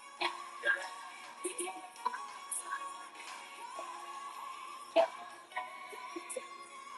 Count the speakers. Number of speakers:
0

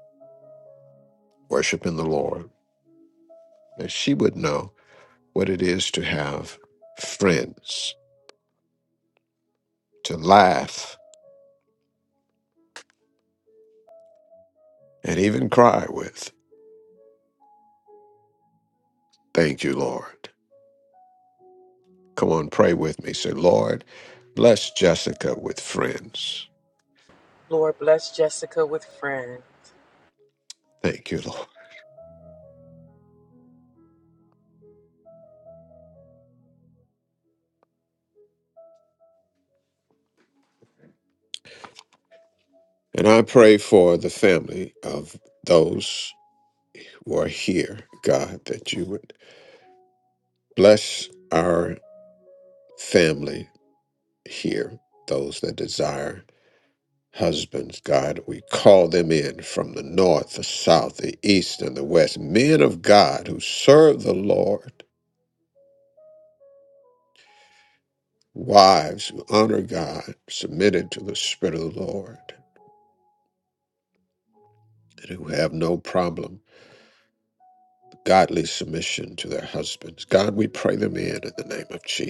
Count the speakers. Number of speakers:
2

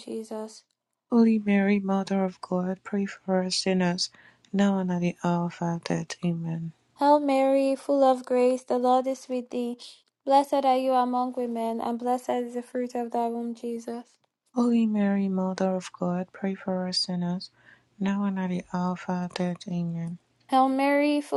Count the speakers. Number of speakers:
2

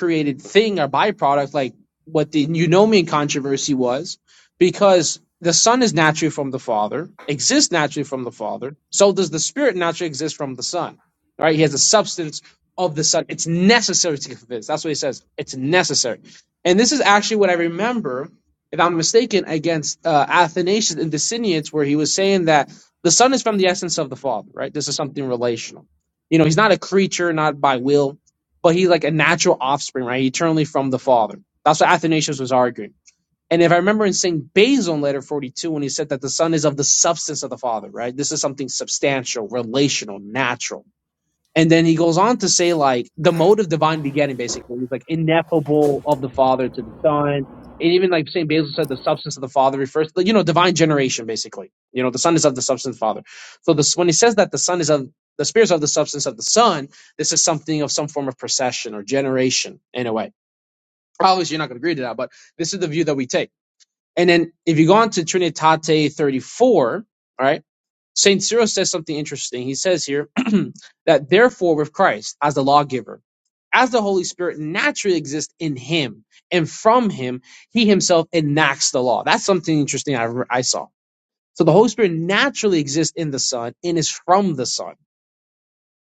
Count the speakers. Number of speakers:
1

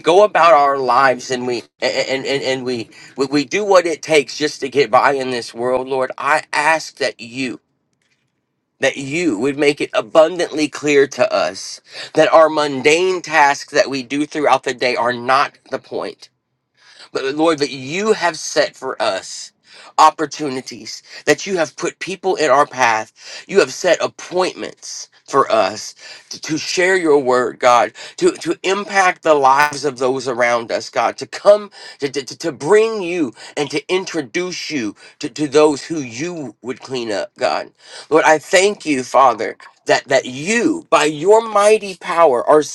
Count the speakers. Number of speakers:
1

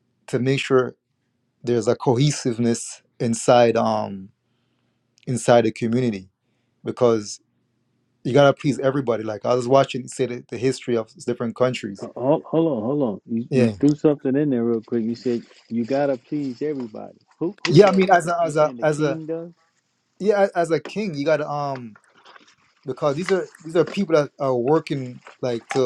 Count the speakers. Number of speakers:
2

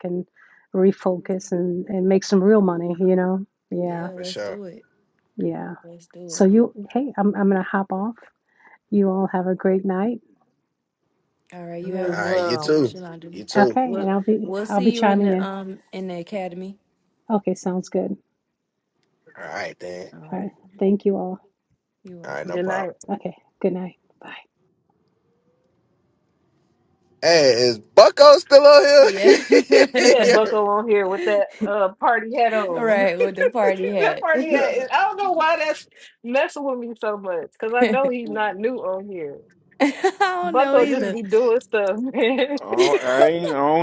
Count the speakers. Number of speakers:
5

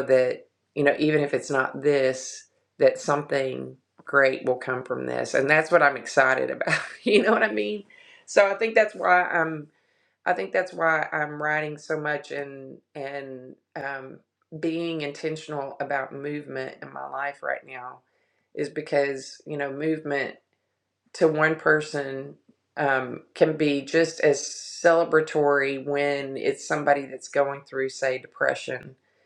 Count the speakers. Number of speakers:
1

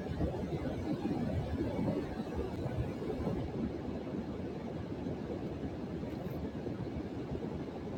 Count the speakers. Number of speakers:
0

